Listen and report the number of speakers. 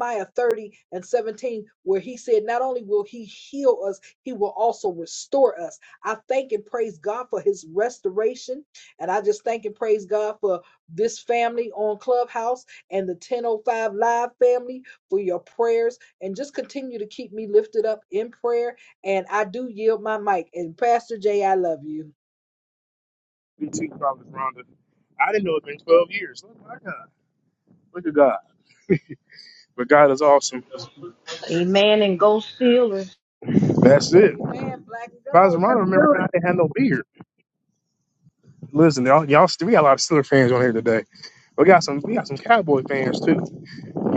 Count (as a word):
three